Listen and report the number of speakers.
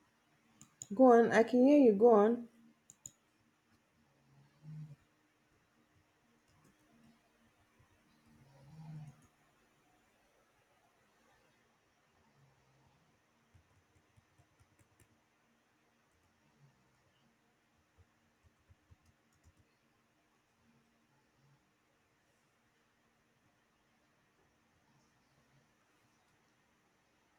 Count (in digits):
1